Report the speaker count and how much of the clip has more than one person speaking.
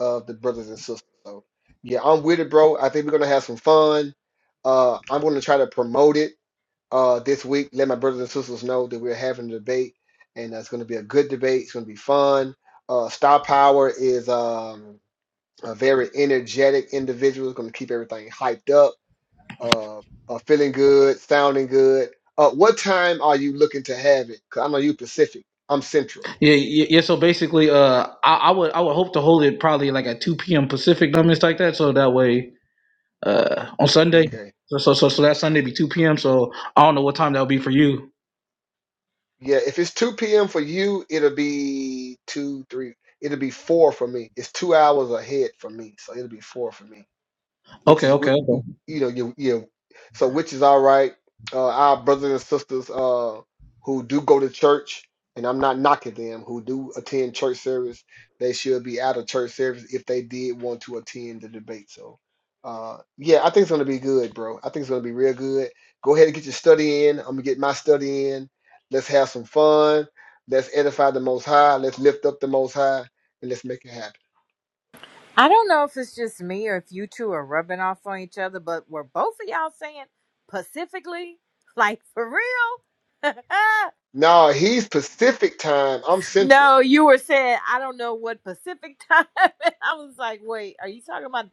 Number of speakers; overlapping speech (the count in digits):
3, about 1%